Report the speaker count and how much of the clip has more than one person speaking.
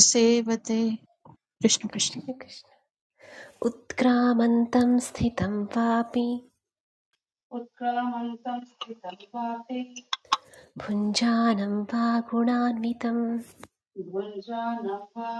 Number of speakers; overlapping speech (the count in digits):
3, about 2%